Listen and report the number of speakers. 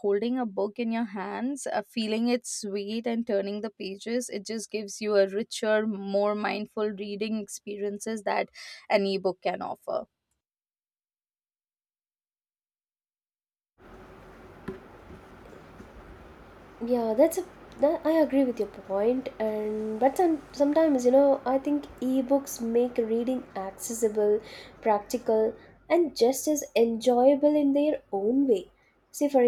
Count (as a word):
two